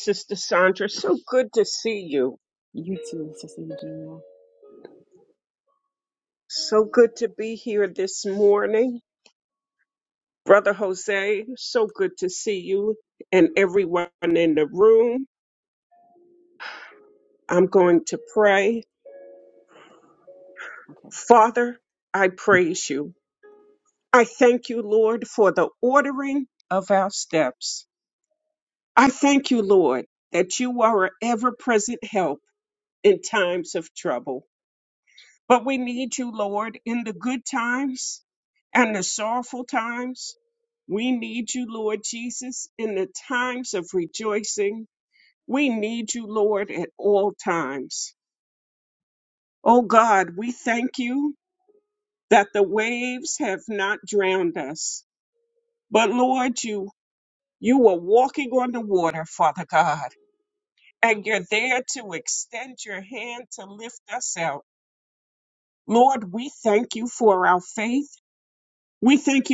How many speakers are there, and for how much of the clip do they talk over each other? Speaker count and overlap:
2, no overlap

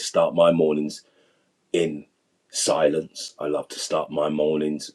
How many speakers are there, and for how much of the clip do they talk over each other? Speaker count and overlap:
1, no overlap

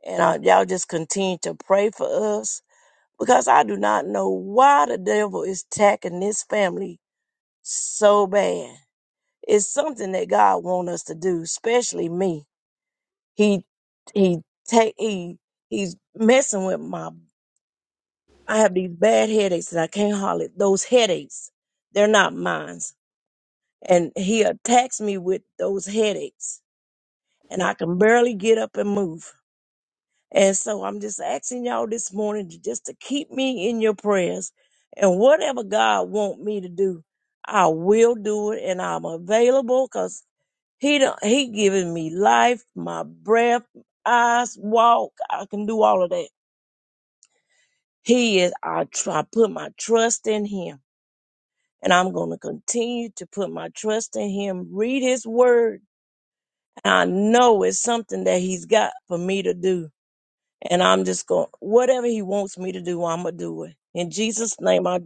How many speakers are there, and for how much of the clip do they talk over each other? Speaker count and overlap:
1, no overlap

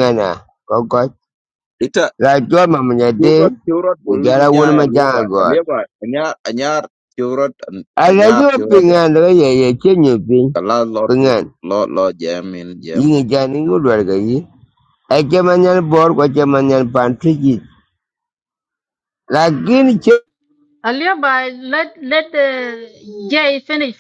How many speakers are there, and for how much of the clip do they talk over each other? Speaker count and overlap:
3, about 12%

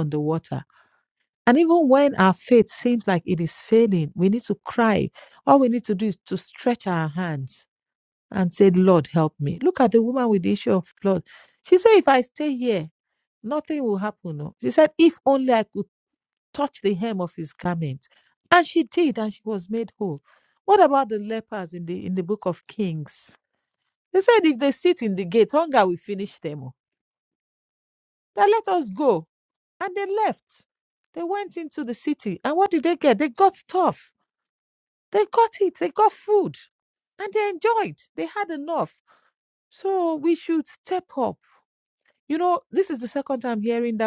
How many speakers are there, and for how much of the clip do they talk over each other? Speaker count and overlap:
1, no overlap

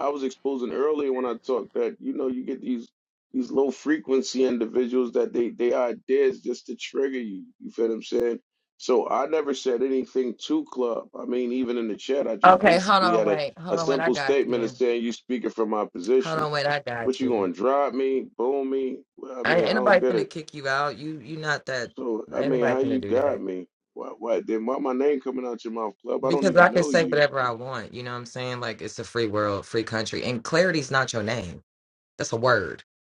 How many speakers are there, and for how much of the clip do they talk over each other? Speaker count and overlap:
2, about 18%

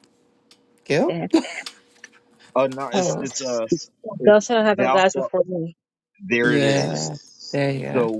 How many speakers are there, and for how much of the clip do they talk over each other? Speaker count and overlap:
3, about 22%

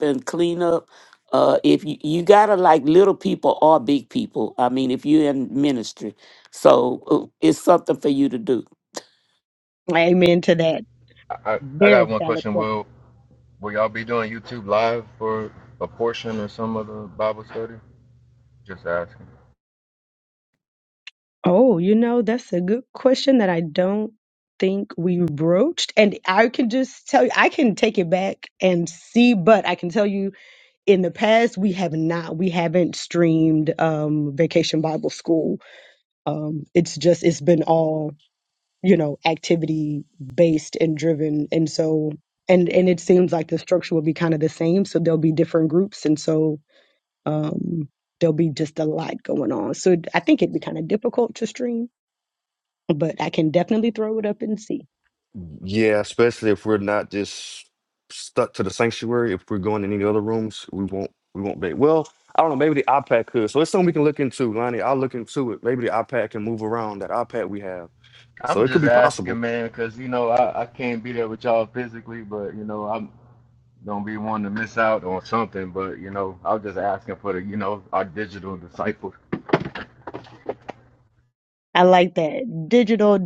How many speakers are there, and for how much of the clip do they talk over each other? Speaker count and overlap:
4, about 2%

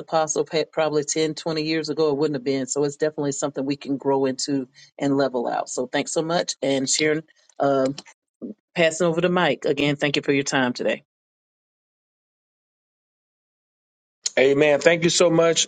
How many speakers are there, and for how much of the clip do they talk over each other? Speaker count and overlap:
2, no overlap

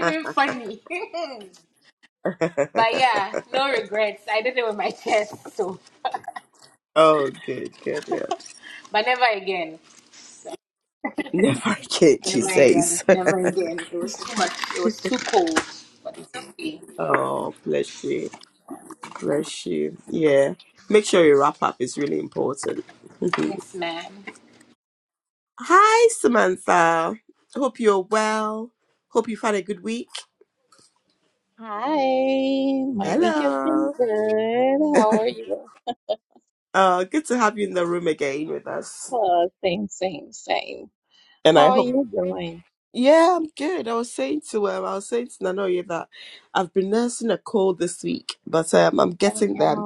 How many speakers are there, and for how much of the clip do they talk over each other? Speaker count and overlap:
3, about 5%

